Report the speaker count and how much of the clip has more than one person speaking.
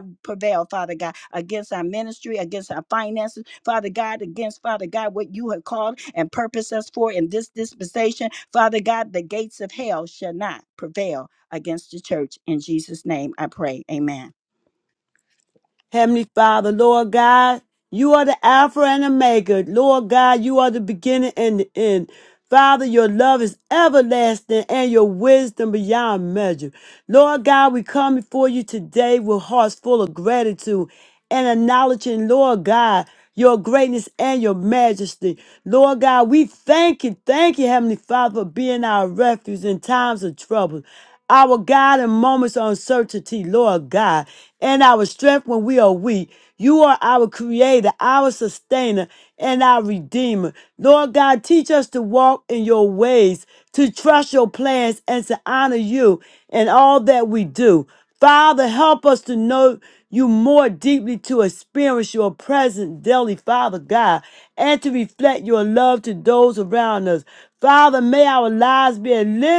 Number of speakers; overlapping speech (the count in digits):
2, no overlap